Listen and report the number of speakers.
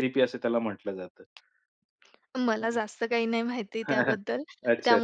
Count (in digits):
2